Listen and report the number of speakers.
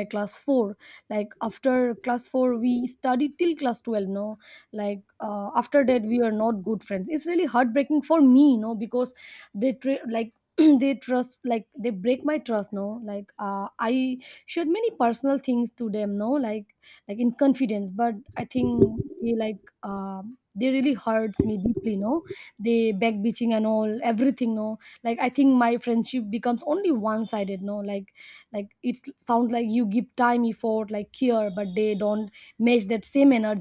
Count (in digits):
1